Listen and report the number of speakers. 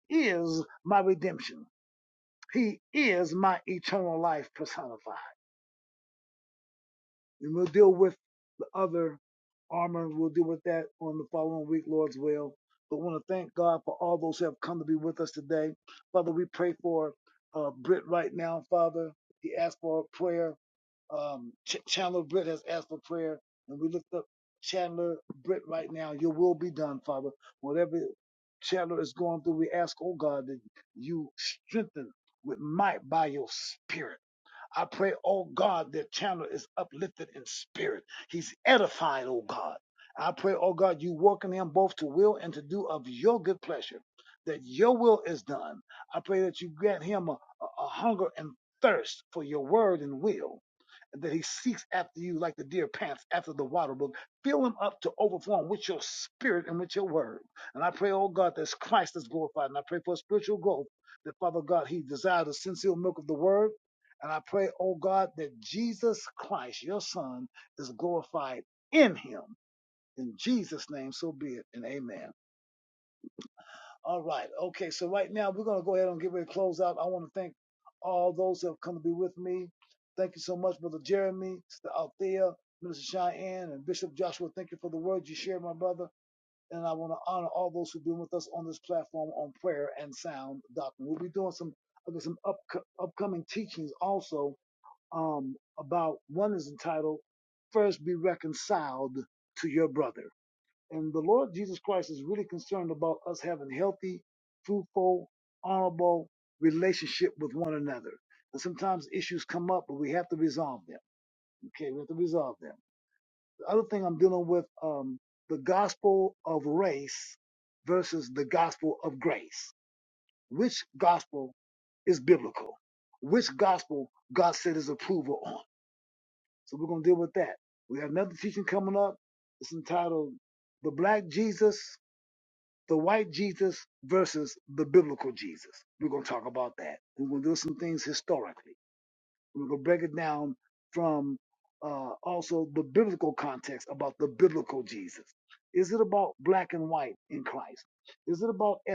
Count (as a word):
one